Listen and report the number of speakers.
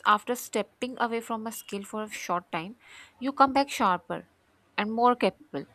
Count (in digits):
1